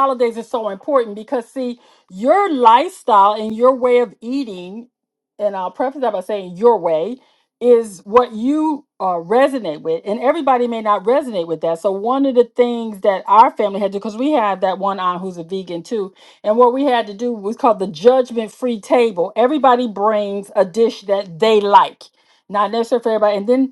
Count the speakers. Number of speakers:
one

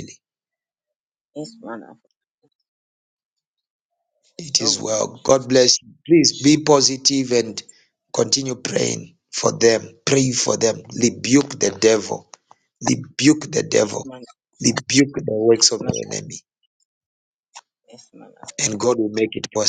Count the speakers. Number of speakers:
two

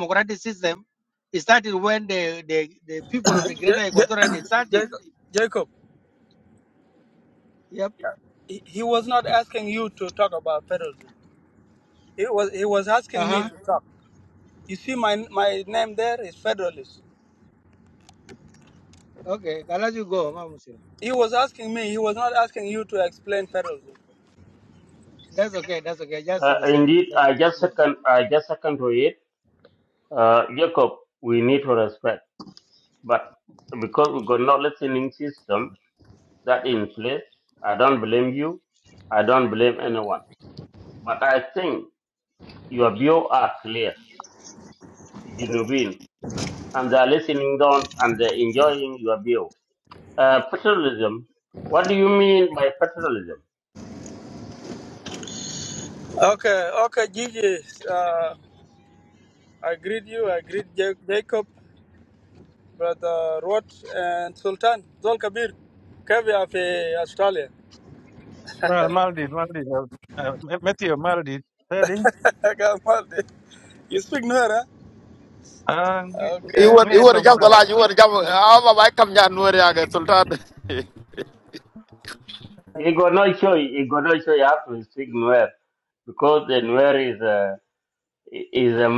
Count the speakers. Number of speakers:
five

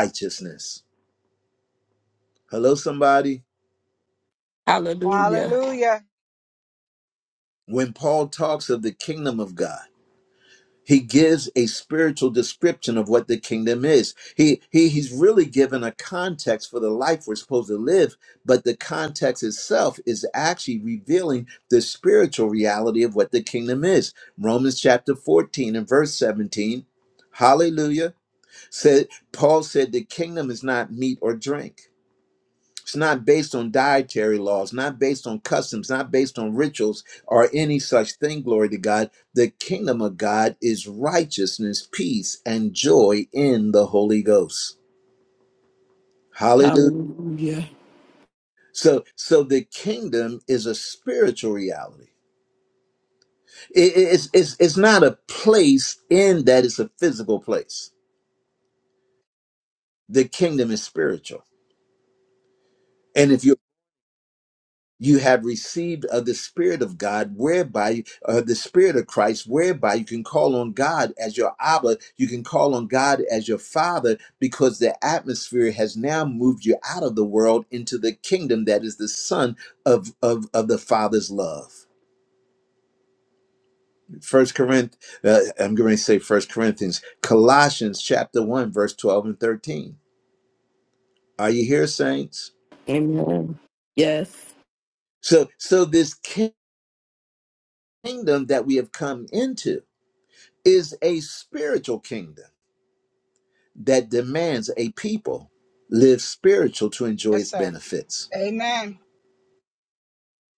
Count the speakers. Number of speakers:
three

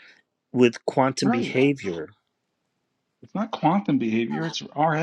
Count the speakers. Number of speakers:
two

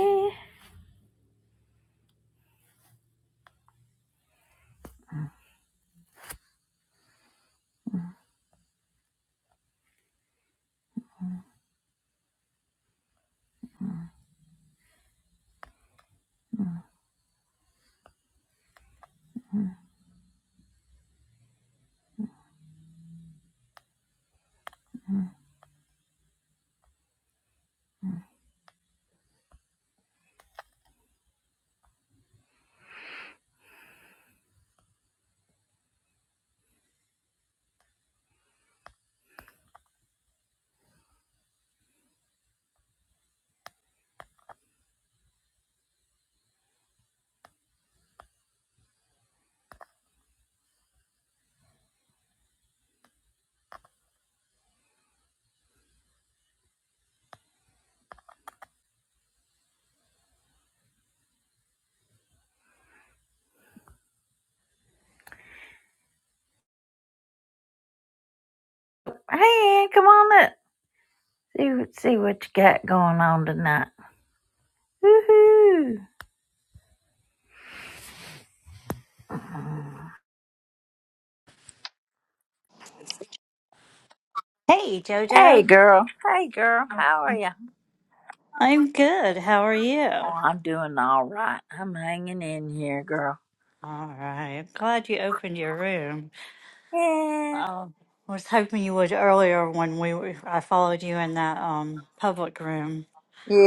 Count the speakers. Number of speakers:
two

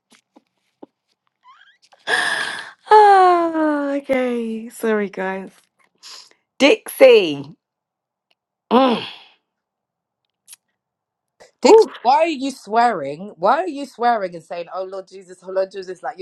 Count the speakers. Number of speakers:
two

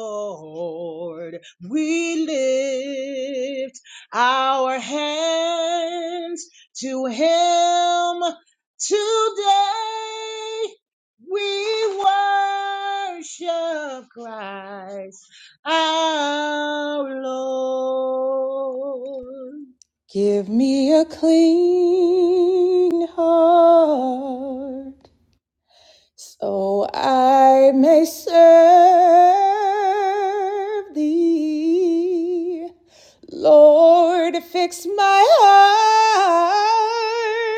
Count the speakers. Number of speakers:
two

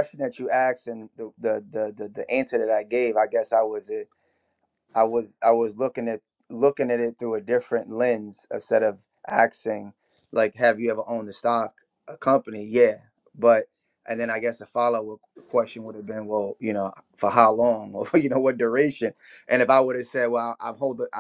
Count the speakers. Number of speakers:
one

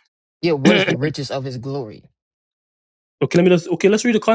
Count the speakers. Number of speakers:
two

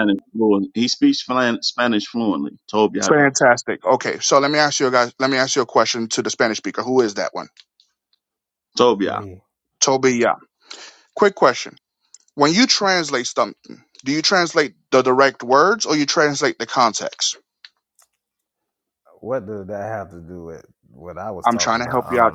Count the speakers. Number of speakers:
three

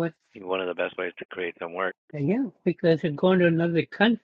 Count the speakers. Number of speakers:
two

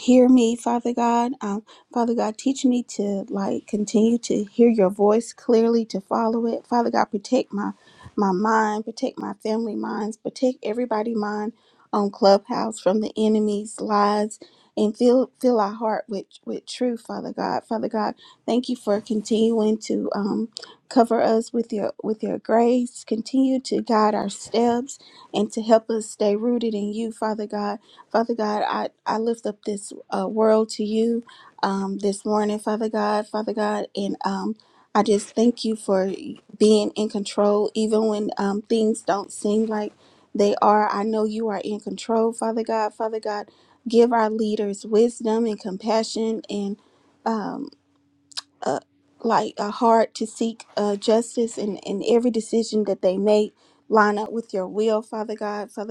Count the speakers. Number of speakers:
one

